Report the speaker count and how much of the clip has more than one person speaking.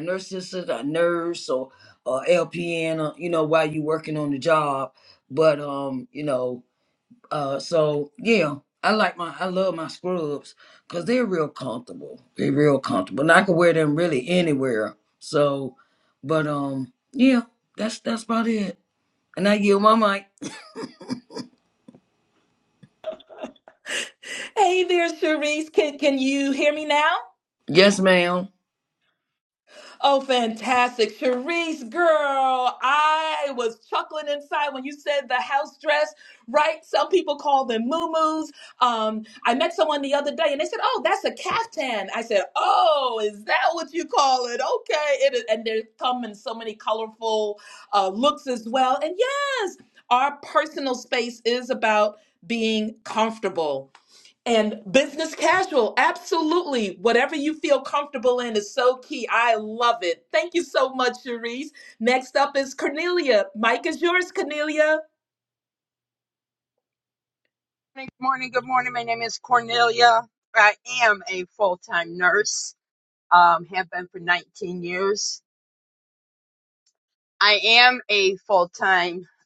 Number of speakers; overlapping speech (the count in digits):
3, no overlap